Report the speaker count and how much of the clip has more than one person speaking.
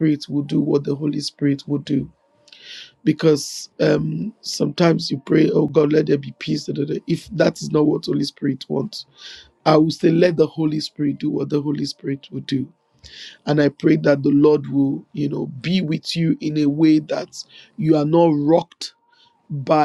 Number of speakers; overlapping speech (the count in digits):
1, no overlap